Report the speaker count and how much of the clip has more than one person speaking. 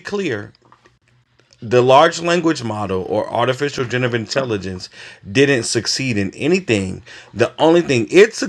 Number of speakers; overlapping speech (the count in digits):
1, no overlap